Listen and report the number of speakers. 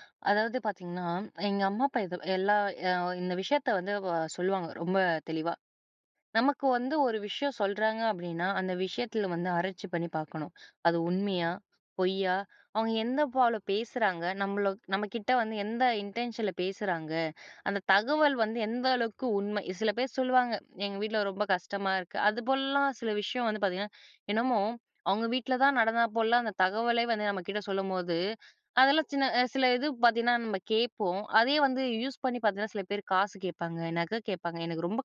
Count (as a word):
one